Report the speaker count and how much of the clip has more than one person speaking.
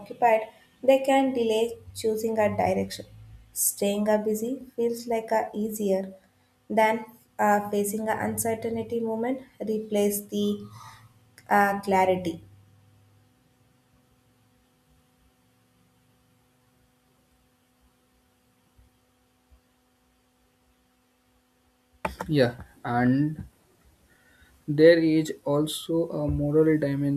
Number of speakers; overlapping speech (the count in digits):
2, no overlap